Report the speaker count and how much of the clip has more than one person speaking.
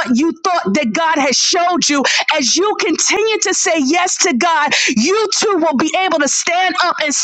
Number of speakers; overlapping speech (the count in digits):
1, no overlap